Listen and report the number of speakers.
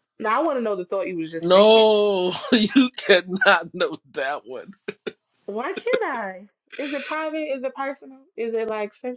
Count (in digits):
2